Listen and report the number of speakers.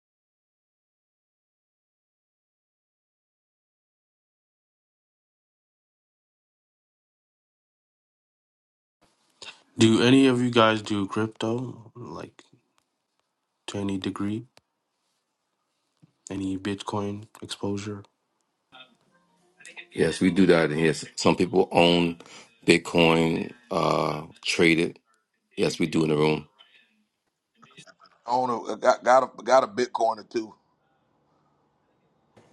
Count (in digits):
3